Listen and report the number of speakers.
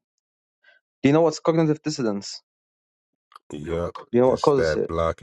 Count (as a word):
two